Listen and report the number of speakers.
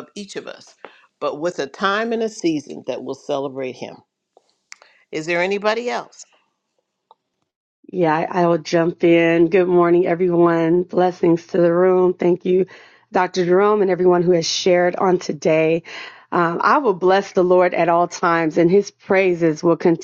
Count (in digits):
2